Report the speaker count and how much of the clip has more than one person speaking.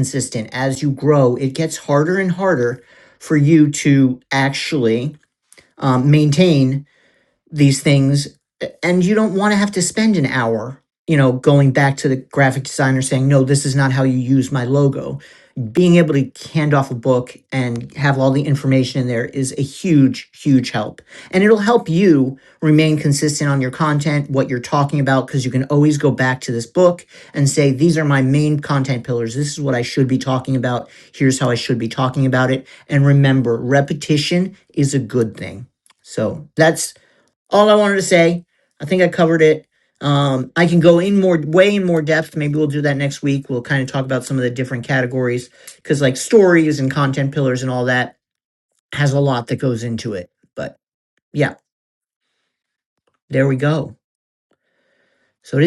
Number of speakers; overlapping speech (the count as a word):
one, no overlap